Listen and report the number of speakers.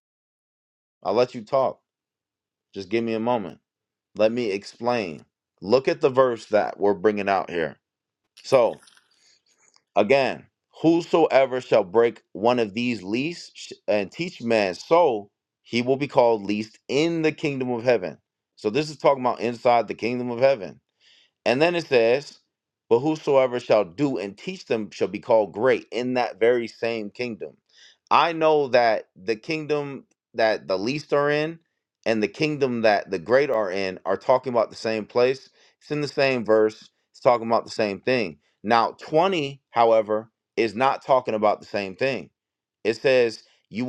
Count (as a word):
one